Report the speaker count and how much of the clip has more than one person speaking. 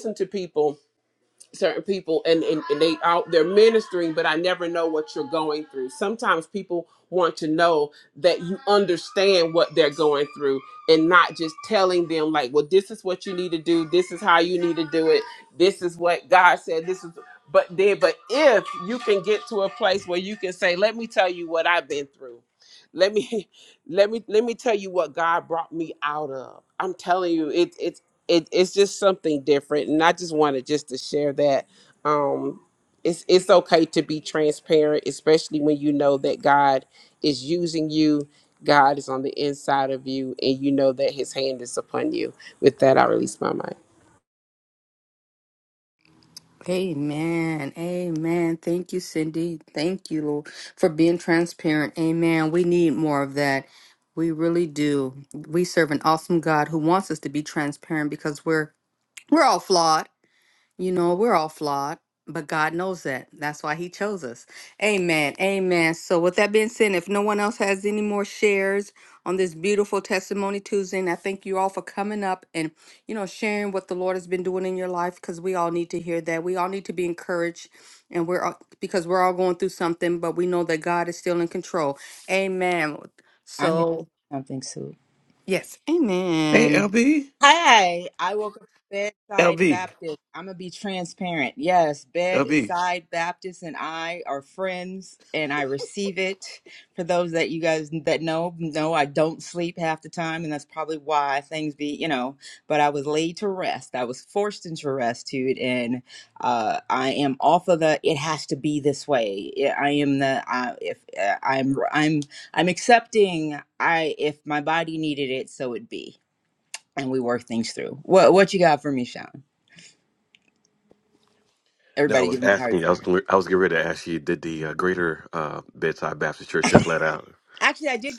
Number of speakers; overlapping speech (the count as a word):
four, about 2%